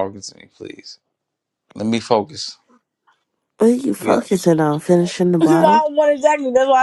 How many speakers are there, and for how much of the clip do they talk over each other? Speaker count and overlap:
three, about 9%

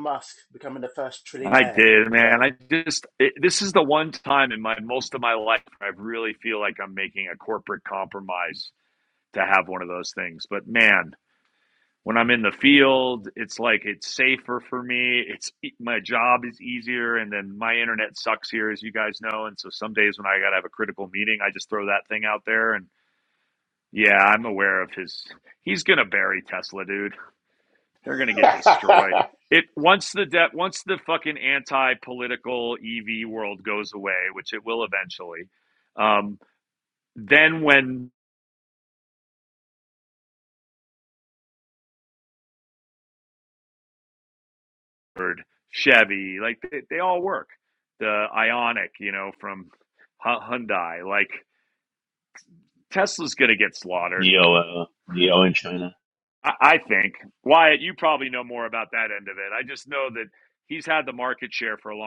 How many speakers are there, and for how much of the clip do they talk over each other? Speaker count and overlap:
three, about 1%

